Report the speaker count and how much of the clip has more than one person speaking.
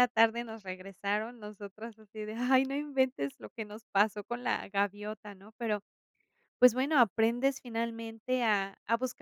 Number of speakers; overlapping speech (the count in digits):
1, no overlap